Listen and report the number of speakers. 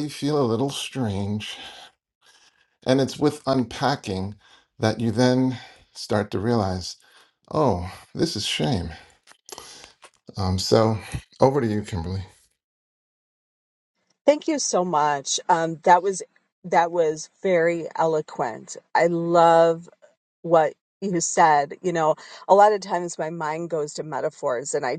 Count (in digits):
2